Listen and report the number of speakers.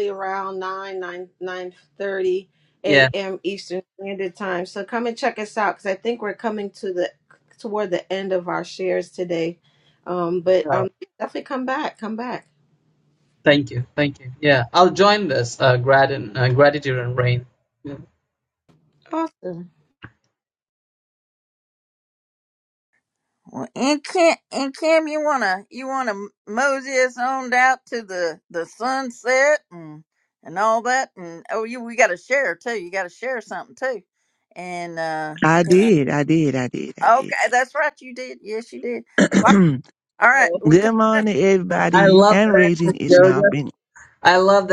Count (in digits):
4